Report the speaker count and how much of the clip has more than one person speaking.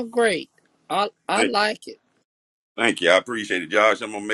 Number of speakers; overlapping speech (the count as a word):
two, no overlap